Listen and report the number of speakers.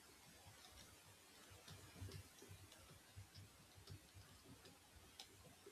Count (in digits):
0